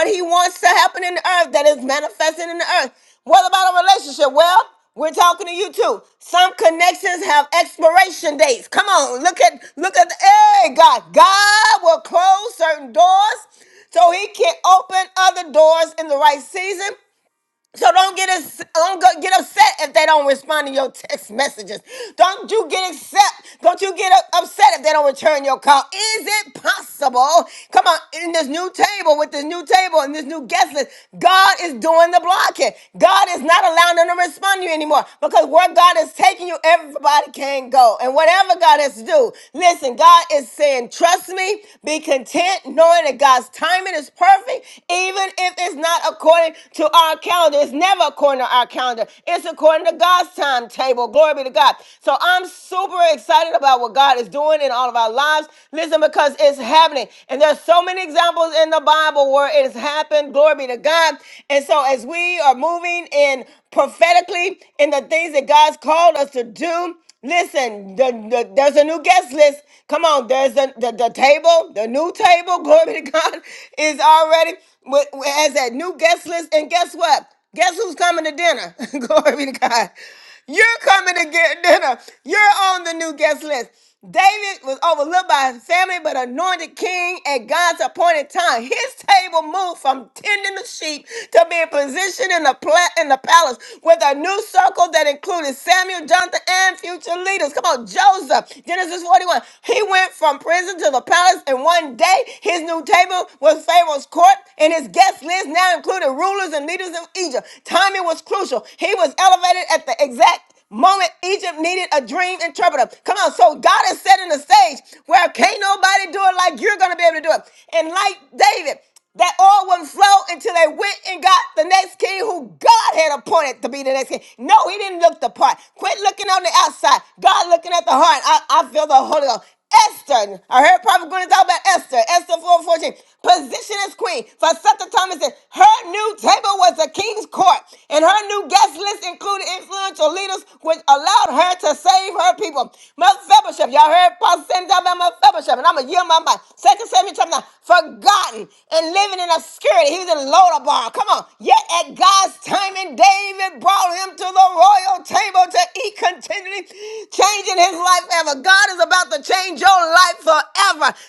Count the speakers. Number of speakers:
1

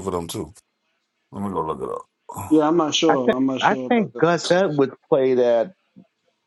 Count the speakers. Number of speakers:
3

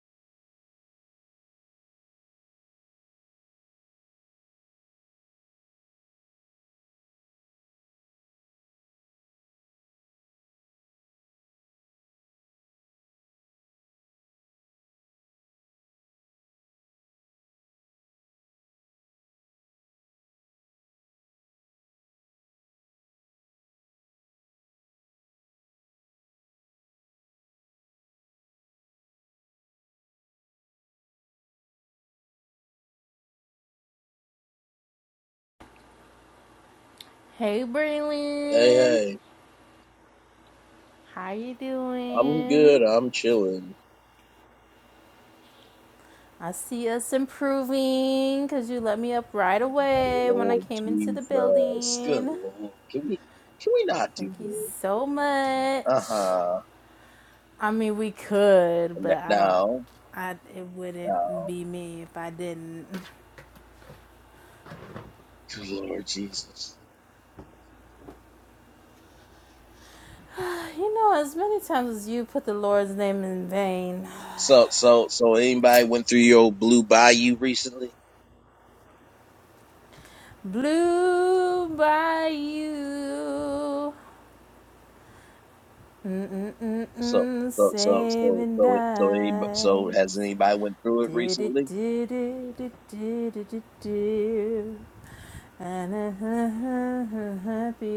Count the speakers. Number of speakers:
2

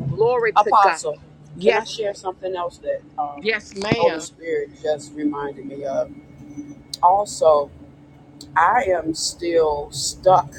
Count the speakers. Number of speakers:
2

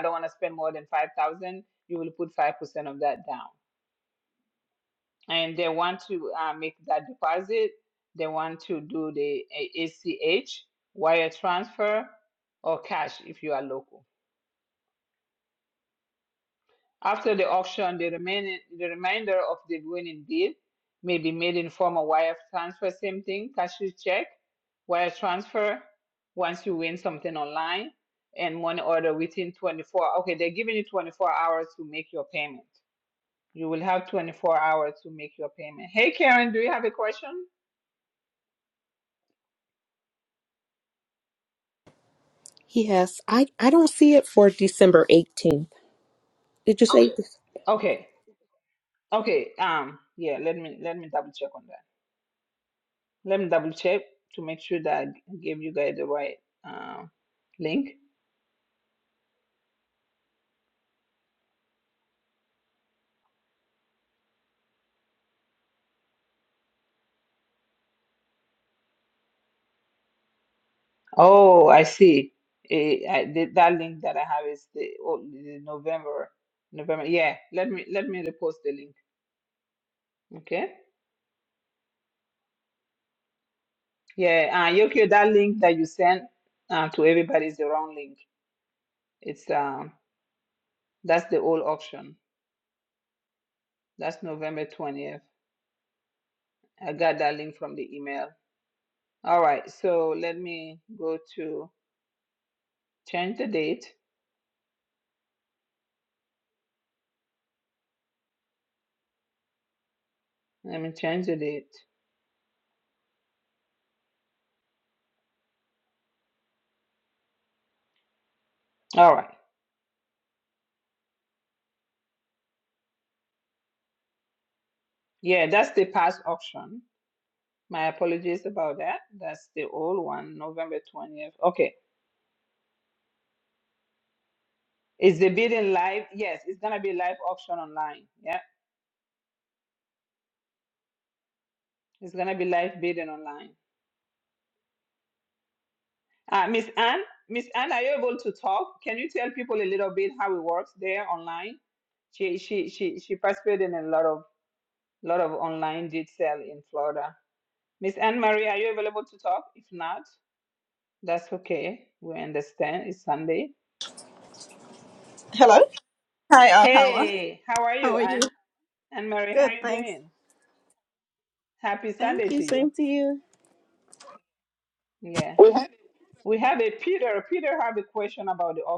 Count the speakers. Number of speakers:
3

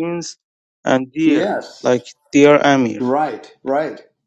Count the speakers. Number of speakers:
2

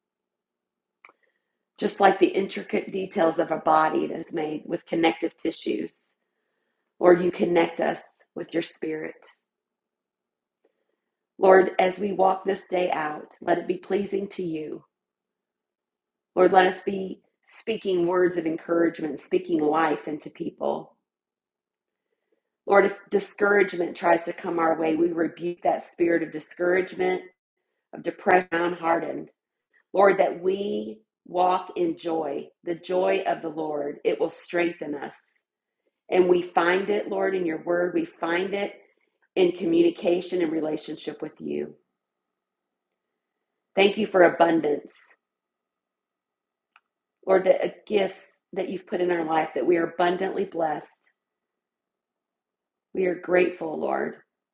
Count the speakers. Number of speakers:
1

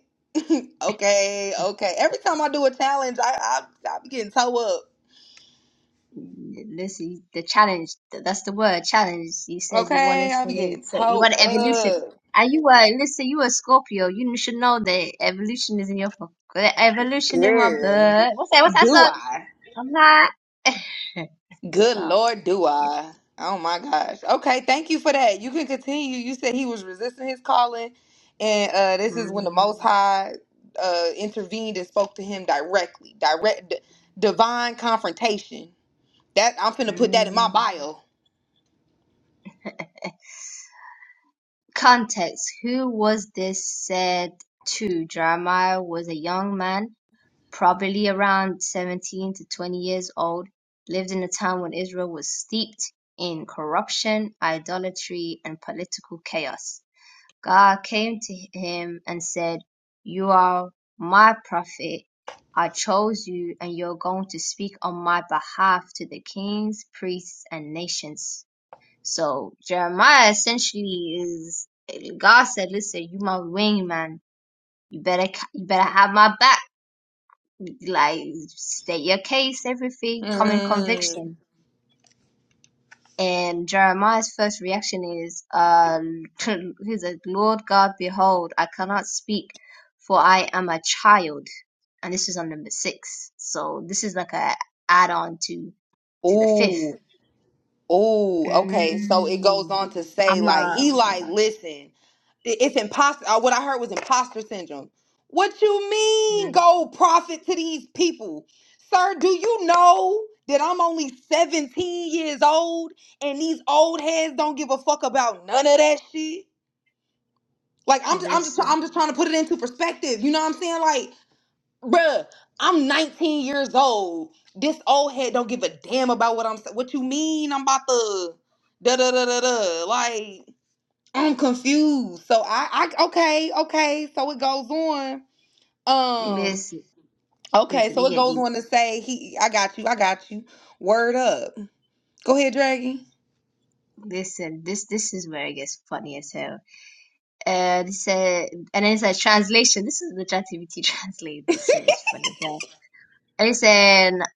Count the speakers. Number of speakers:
2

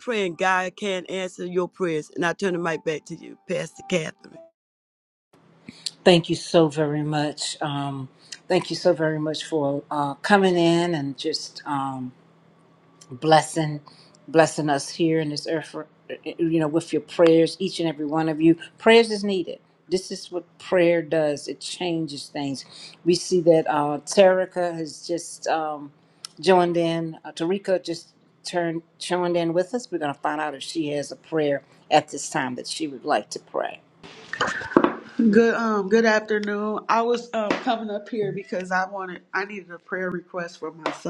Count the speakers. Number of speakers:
3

